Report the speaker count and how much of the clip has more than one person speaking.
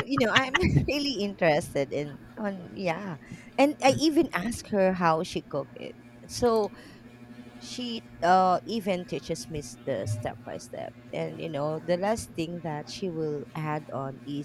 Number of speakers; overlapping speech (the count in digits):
1, no overlap